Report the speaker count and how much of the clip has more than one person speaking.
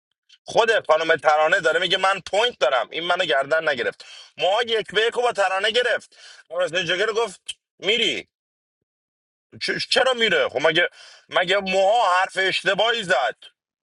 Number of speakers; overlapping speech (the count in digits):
1, no overlap